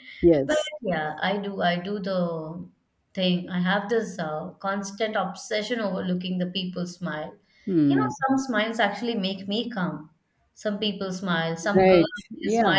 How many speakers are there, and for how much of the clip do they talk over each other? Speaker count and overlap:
2, about 12%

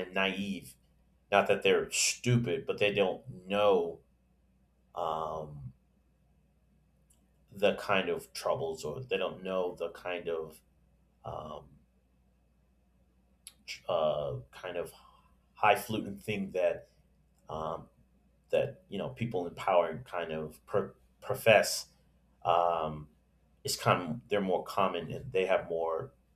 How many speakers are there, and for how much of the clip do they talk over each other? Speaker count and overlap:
1, no overlap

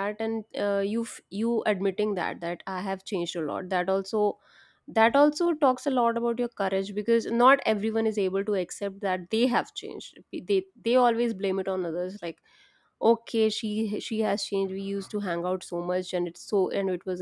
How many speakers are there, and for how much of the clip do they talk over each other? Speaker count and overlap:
1, no overlap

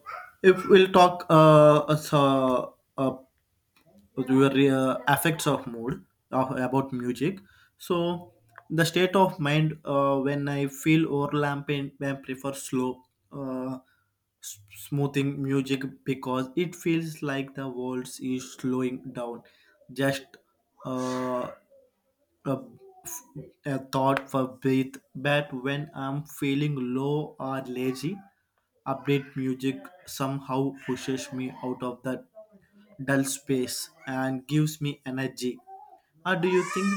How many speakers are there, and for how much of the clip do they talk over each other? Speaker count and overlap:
1, no overlap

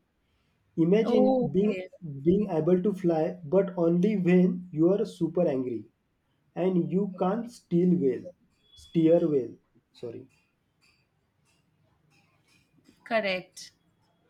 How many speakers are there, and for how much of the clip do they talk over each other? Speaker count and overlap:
2, about 5%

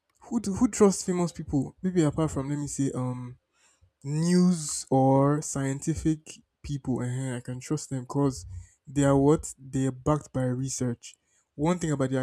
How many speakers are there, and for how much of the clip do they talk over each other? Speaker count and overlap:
1, no overlap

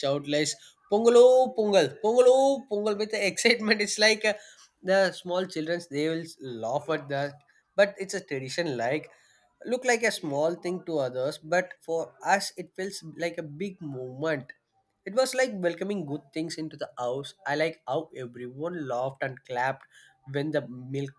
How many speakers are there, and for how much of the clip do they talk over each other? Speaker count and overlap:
1, no overlap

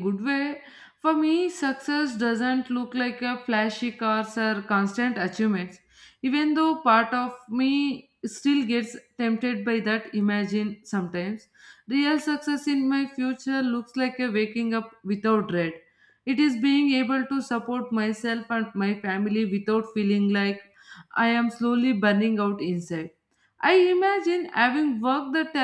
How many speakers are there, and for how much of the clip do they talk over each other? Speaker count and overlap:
1, no overlap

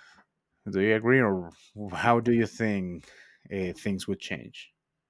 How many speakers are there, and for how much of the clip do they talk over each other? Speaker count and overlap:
1, no overlap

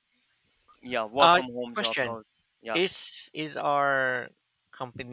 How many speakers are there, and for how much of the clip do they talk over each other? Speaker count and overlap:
2, about 14%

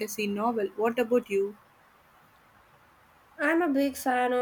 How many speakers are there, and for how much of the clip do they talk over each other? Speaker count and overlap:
2, no overlap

